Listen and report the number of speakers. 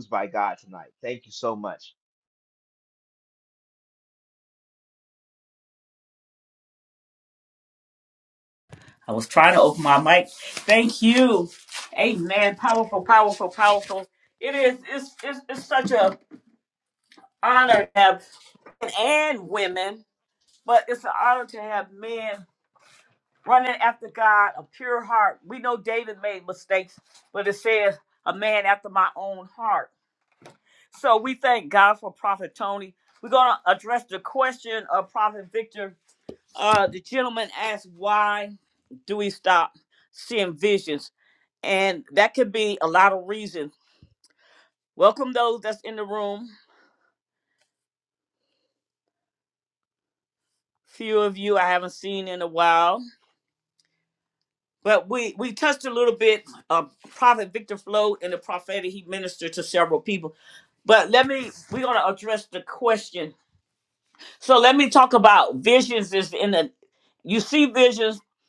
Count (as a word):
two